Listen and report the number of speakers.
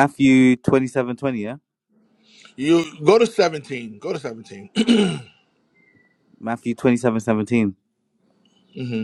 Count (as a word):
two